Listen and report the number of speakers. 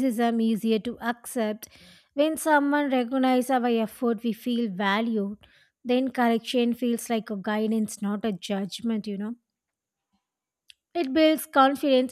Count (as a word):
one